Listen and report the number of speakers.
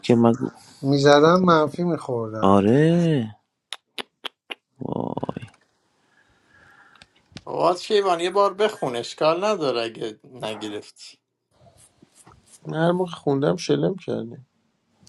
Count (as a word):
four